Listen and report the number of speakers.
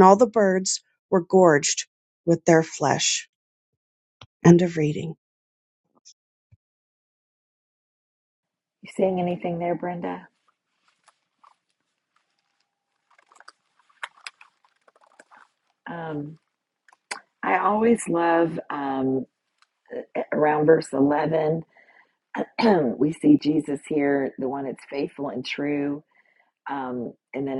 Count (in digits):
2